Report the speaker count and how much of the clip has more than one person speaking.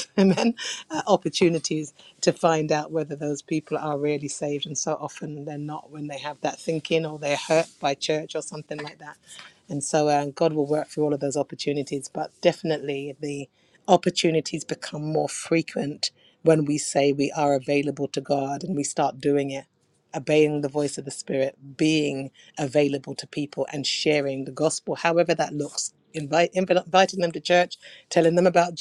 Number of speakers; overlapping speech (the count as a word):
one, no overlap